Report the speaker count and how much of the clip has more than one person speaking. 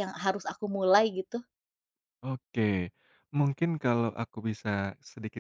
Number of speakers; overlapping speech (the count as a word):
two, no overlap